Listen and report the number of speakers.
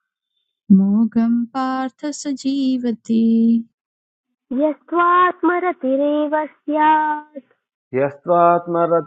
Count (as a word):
three